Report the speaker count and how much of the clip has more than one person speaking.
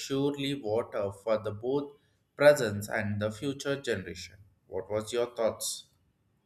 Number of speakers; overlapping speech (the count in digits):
1, no overlap